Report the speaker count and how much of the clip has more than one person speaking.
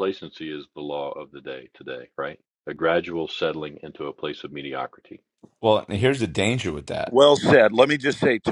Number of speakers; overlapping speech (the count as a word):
three, under 1%